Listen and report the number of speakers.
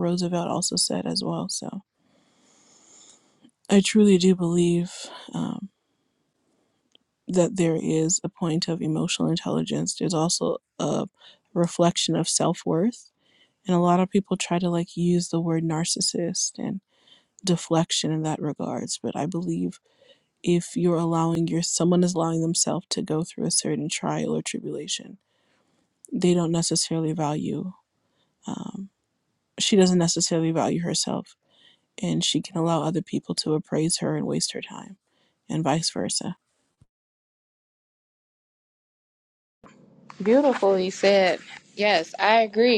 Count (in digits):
2